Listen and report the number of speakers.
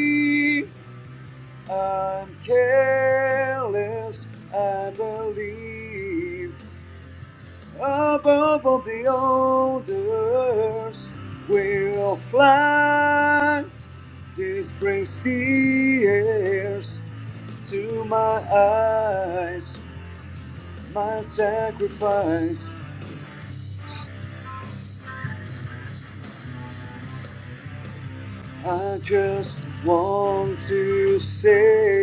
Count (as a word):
one